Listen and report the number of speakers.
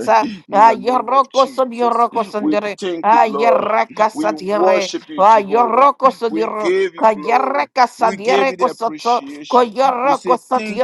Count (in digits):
2